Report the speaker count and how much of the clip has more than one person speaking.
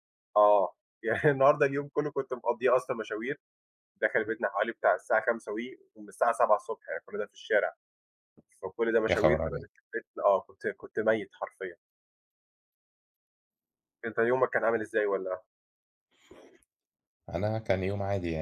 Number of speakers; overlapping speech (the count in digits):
2, about 3%